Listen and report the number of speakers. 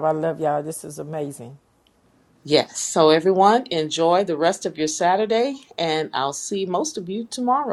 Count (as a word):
two